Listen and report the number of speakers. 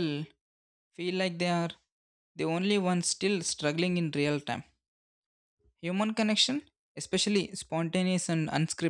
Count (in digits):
1